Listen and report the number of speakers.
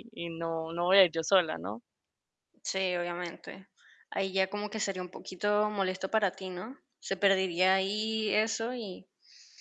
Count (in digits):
2